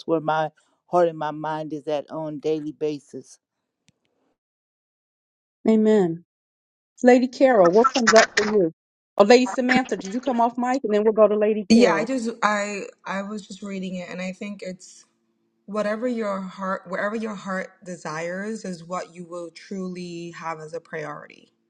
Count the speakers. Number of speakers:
3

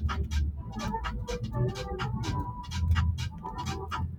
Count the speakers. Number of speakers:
0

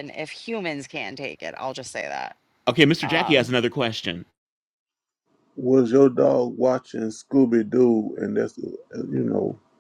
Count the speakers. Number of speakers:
3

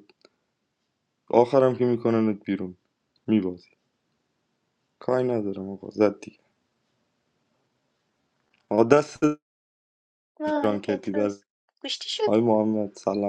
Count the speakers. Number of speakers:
2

